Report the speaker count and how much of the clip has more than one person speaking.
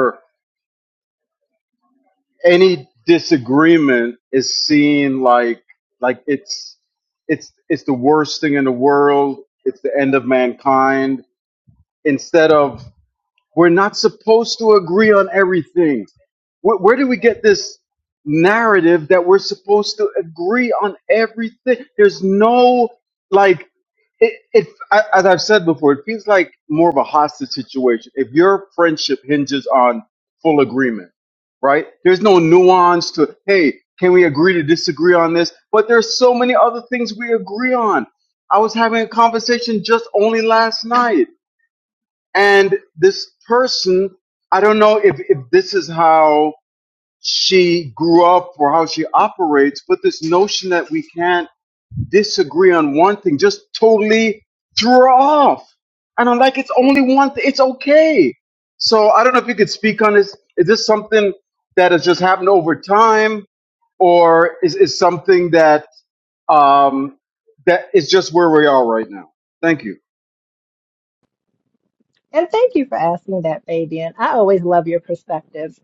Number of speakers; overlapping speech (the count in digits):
2, no overlap